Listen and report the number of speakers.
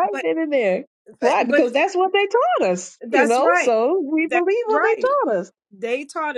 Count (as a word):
two